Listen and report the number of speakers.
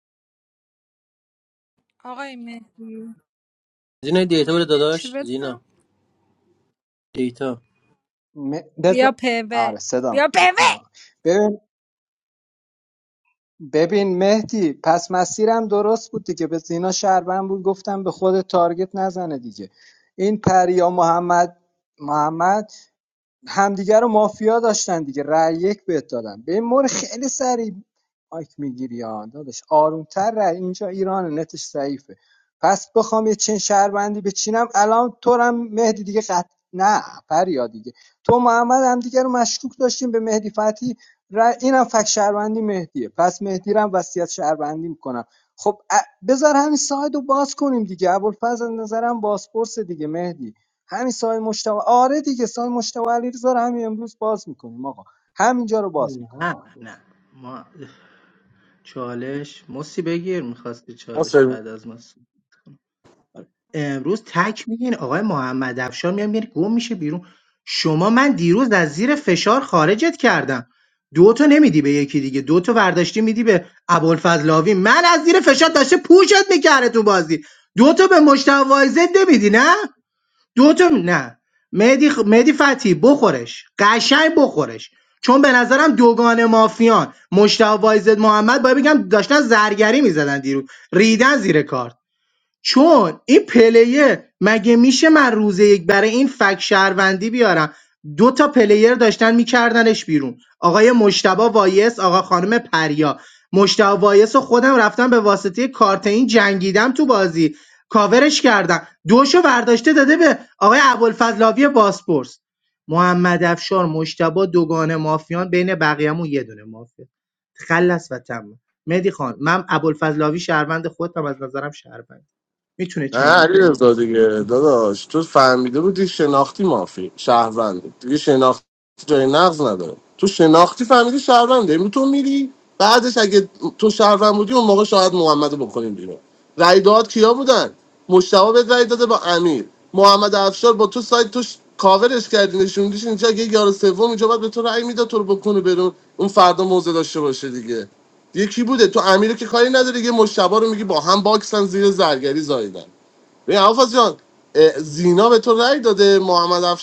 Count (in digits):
5